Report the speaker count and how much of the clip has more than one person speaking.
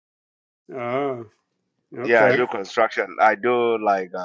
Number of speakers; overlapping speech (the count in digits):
2, about 10%